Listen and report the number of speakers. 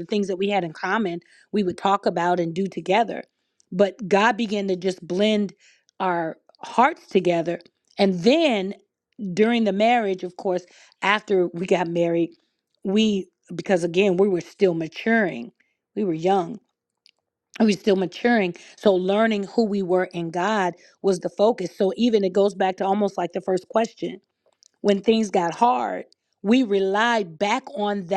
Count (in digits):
1